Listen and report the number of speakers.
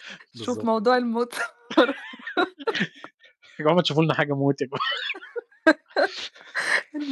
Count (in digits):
2